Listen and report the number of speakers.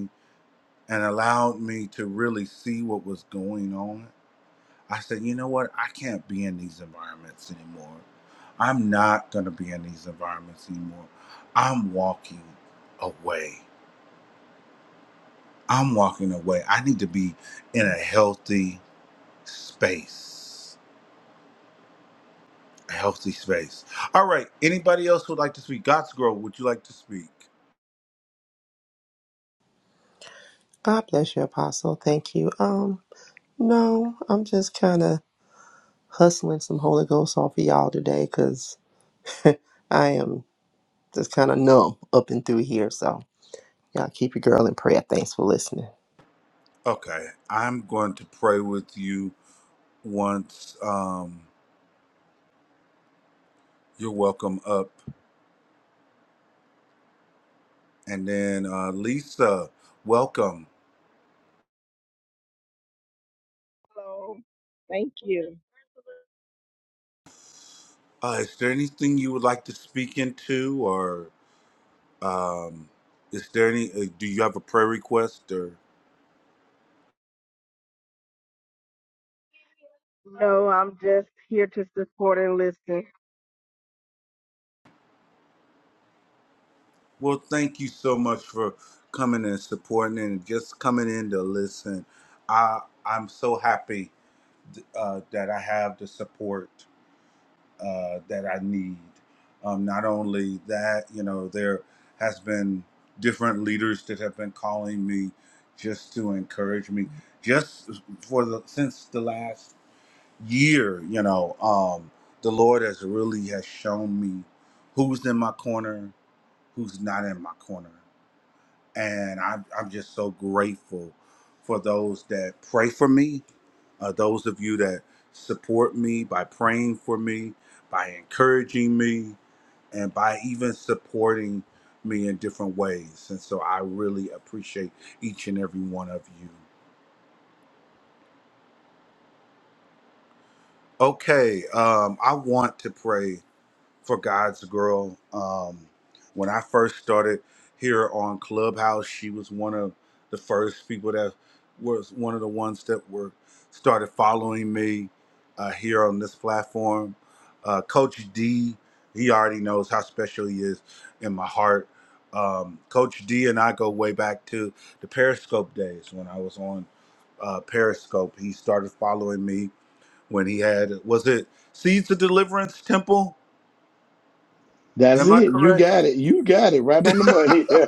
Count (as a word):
four